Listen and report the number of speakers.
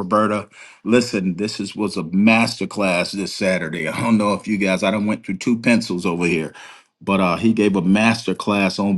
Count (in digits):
1